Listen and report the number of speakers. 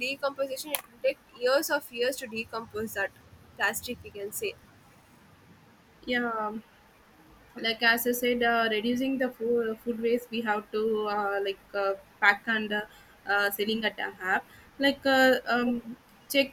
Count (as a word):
two